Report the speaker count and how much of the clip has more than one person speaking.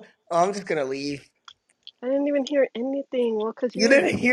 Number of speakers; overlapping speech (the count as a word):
two, about 6%